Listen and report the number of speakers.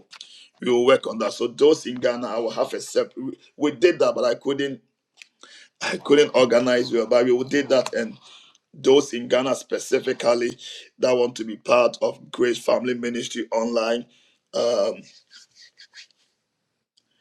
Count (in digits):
1